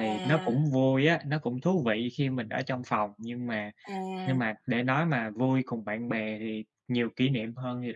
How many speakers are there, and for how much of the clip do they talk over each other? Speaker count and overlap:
two, about 10%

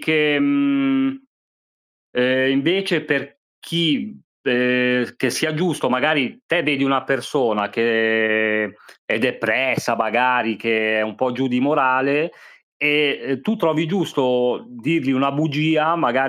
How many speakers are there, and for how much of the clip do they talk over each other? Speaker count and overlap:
one, no overlap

